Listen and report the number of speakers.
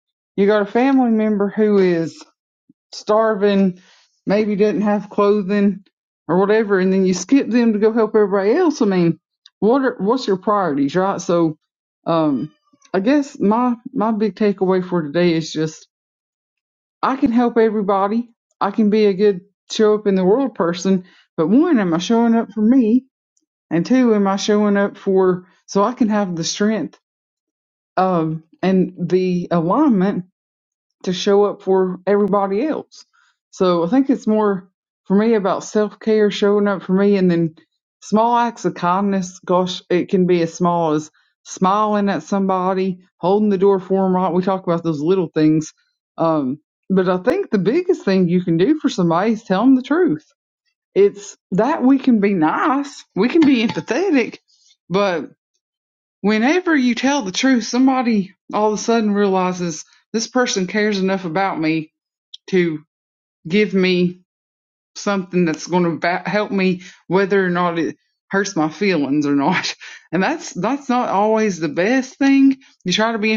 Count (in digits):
1